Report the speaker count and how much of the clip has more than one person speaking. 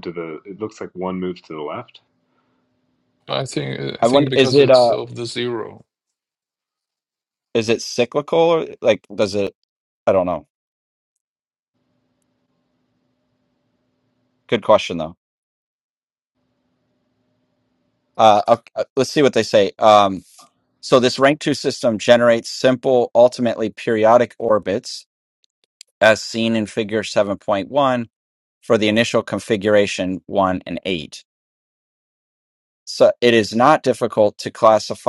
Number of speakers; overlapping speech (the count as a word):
three, about 3%